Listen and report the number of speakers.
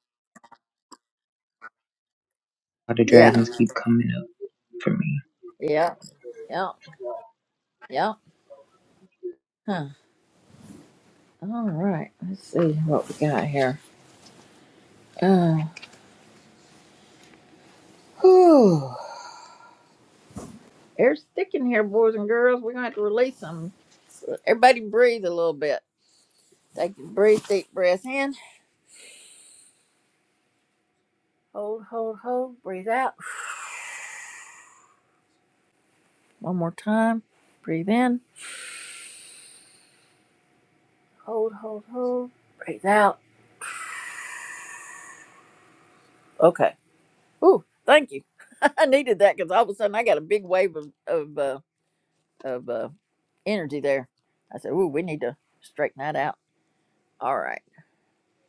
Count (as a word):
two